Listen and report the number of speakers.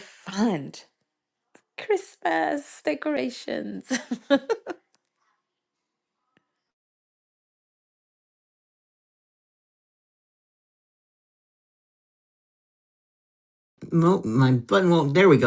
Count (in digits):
2